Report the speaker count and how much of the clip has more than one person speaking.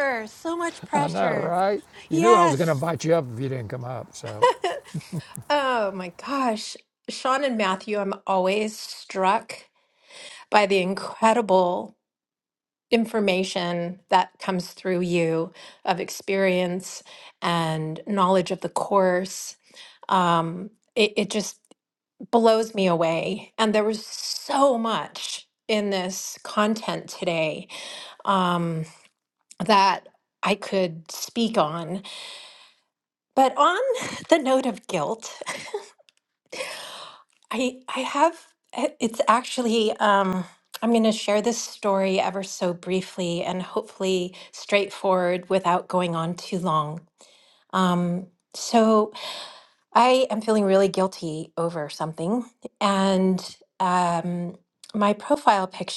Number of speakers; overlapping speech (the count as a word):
two, about 2%